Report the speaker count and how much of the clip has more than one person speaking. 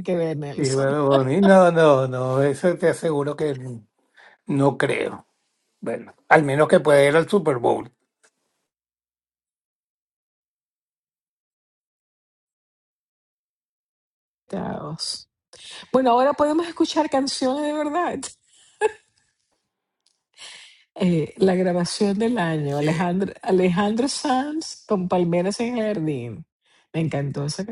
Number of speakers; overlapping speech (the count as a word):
two, about 1%